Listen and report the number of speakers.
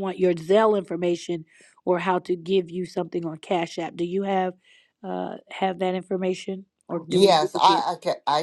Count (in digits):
2